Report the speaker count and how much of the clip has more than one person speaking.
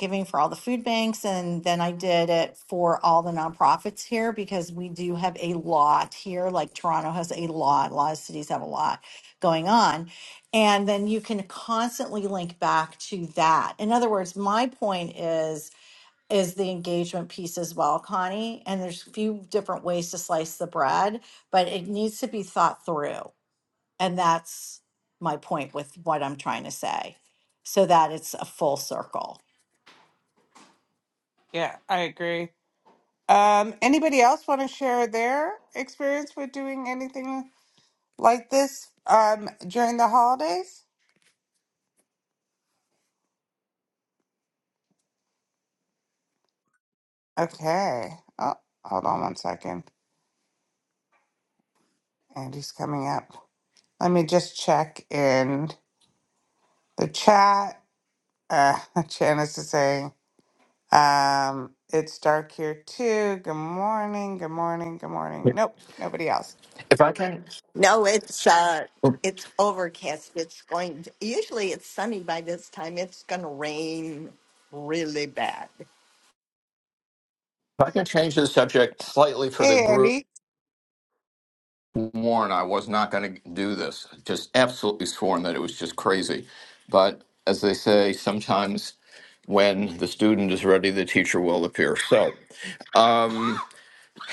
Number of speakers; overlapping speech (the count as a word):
four, about 1%